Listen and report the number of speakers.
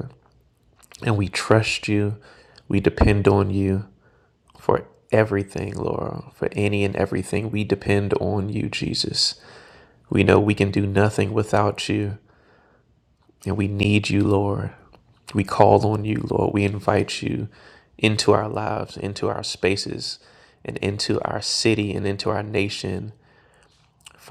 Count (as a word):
one